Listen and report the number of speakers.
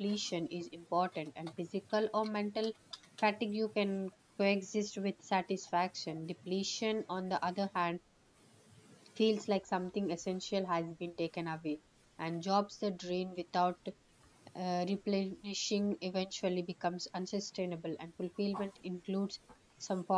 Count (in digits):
1